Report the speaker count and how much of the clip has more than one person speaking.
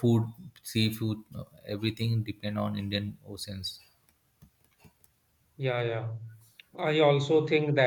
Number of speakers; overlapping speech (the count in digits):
2, no overlap